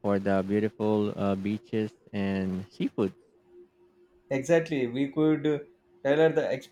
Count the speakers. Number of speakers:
two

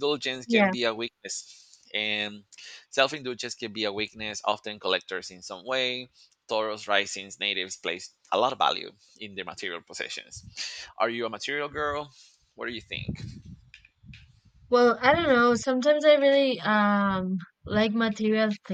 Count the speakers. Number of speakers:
two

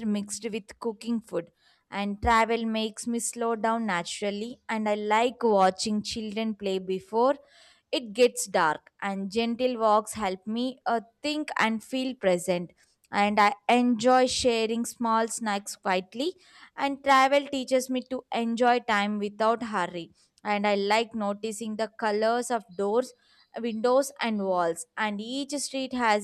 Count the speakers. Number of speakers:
one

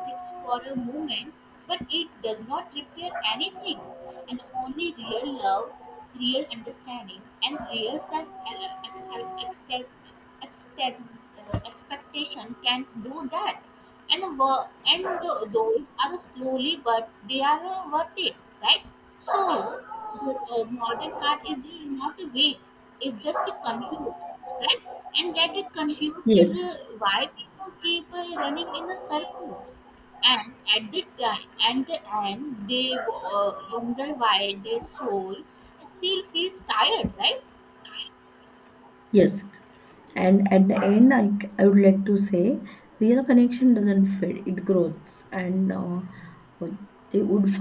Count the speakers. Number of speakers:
two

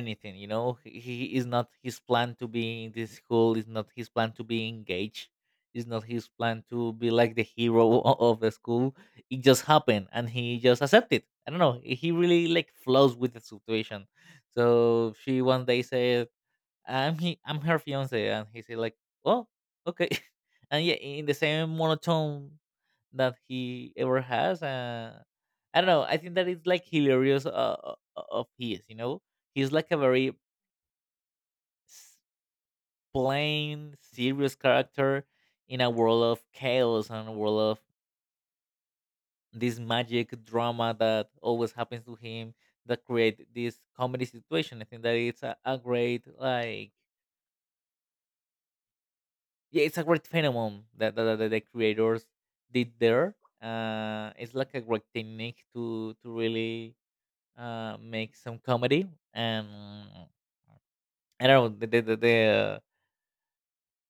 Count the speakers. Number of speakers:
one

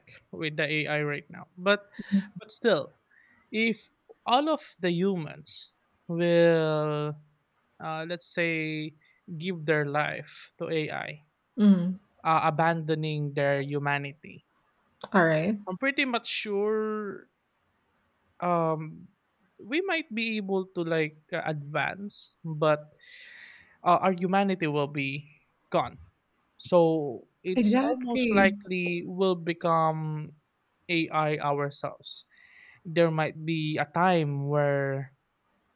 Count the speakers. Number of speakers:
two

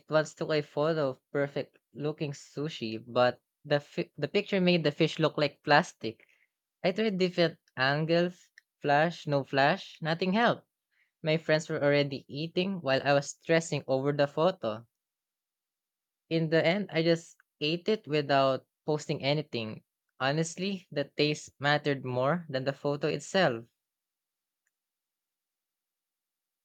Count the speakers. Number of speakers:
one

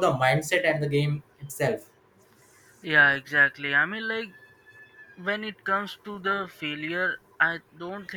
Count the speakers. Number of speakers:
two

